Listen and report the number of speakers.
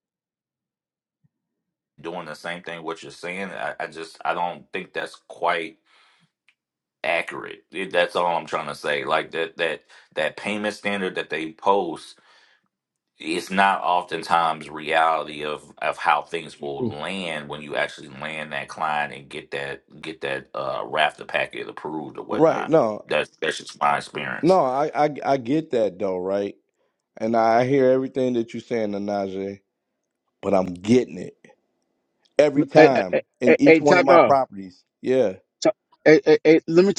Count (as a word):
three